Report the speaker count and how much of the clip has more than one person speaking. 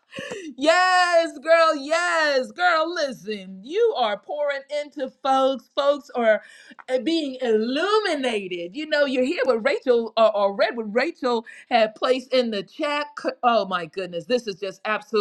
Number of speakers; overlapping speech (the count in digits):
1, no overlap